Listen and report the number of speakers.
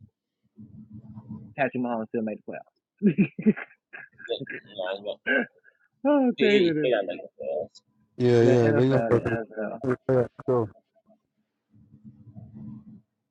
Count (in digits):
3